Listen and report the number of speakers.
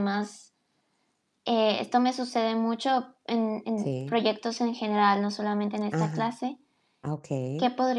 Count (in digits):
2